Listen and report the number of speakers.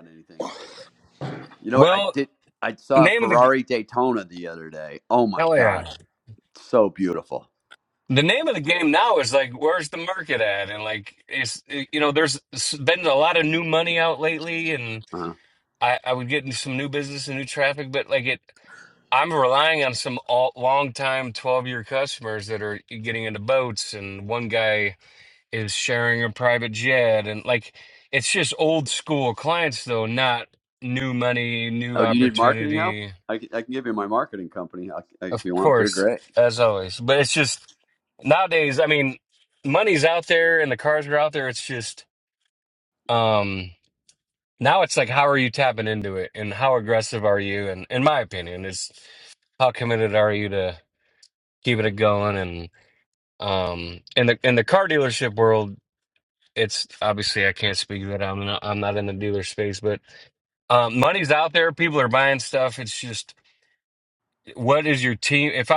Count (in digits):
2